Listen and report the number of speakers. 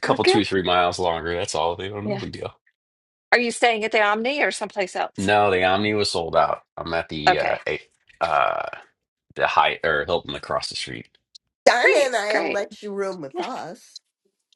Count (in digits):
3